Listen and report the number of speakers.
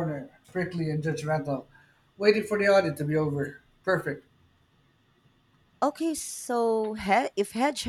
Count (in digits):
2